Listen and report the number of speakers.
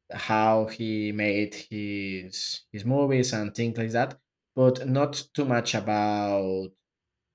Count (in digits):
1